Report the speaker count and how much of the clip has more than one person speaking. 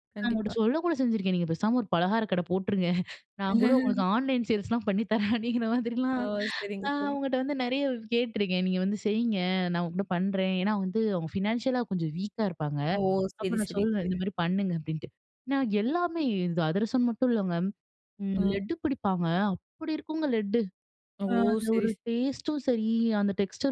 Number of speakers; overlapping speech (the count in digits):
2, about 9%